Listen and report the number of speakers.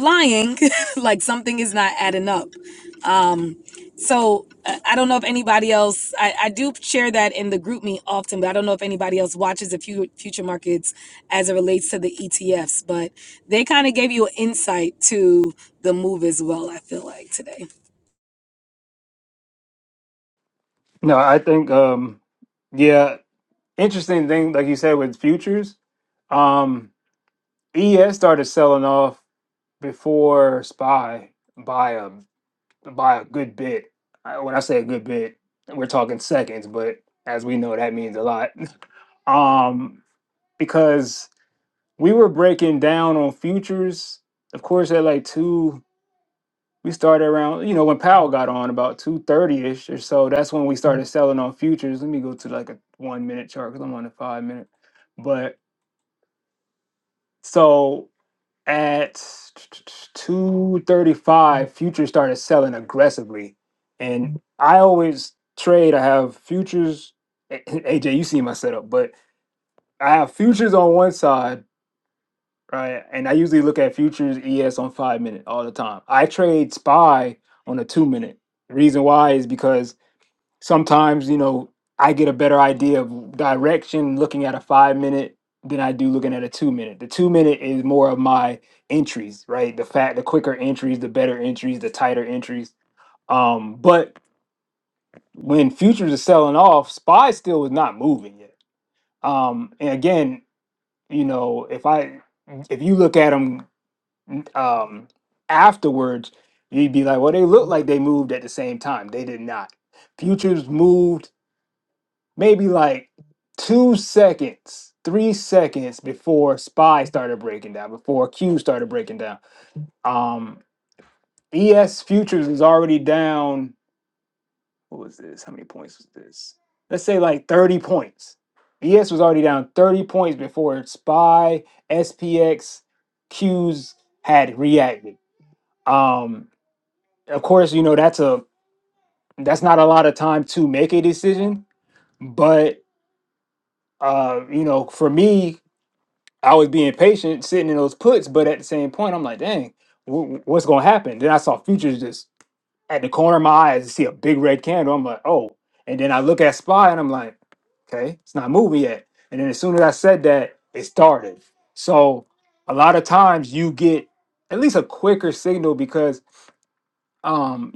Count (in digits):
2